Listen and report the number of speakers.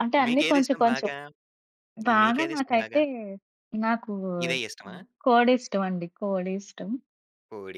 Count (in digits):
2